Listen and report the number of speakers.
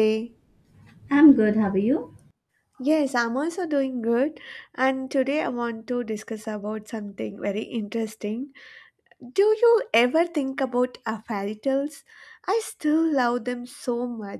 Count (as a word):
two